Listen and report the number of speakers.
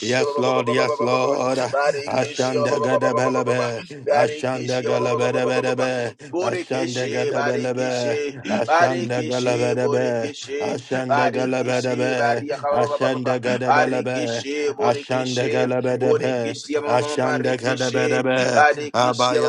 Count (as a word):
two